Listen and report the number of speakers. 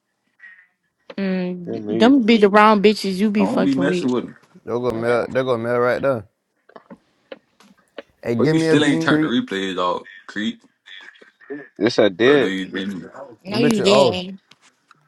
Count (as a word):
four